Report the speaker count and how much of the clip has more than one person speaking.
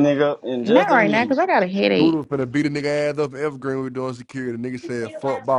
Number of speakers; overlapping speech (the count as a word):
three, about 16%